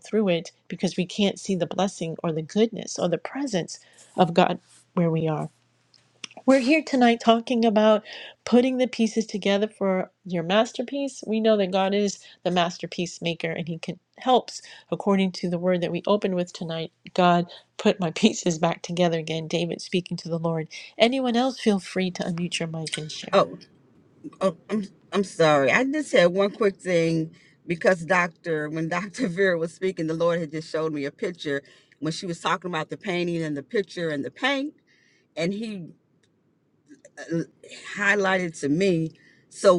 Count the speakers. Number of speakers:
2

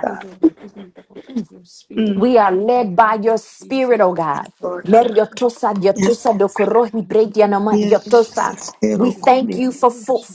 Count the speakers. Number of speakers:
3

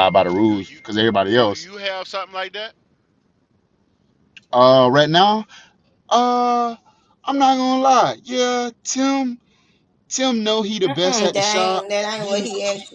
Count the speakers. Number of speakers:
3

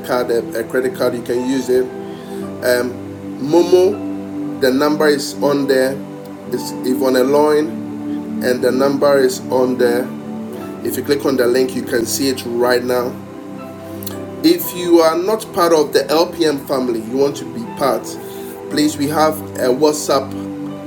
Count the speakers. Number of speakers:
1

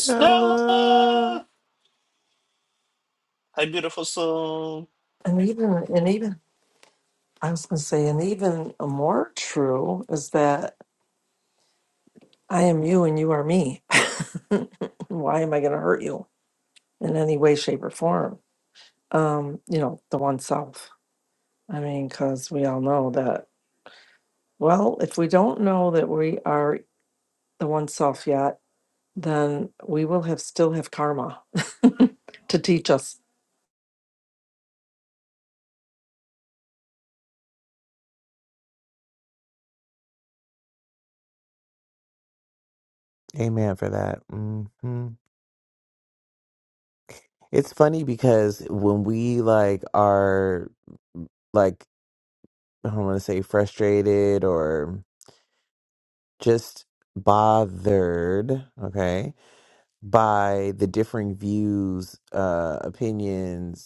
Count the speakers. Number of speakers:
3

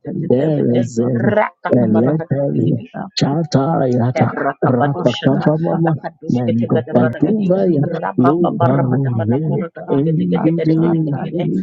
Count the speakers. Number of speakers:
3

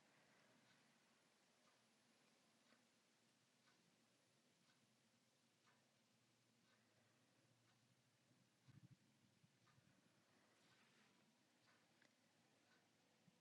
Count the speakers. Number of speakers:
0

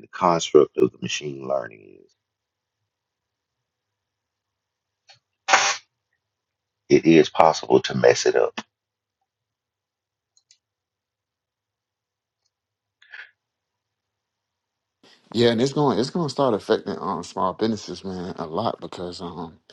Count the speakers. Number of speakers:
2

